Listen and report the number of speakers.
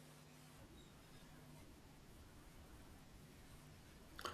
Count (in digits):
0